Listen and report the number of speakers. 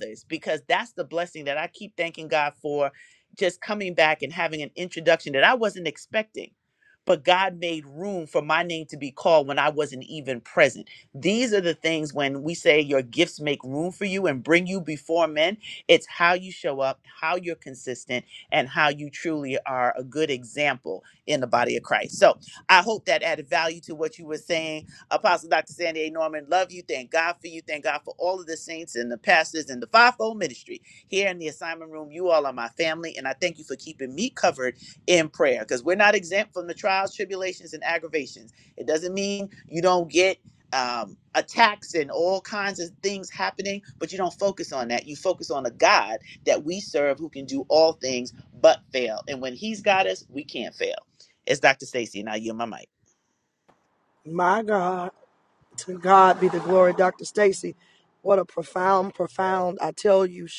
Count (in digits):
2